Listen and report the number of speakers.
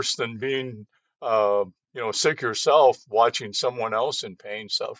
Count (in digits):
1